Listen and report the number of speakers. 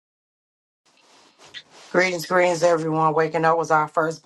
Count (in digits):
1